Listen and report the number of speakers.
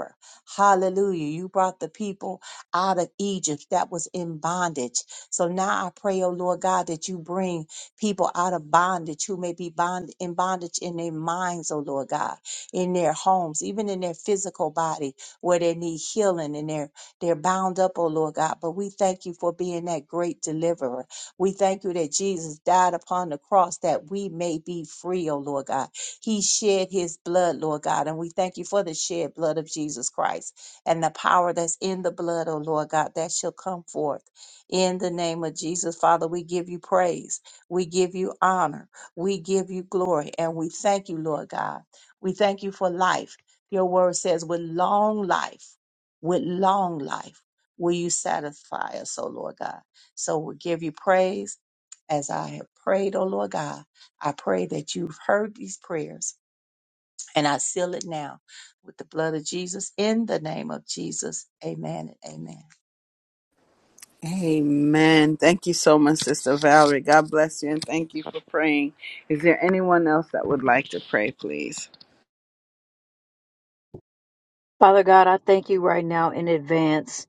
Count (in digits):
3